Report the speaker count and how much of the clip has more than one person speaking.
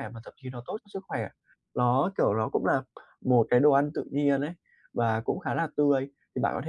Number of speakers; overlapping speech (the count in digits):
1, no overlap